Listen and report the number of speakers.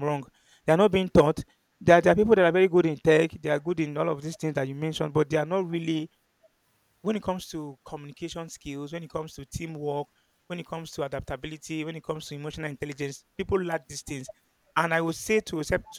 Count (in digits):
1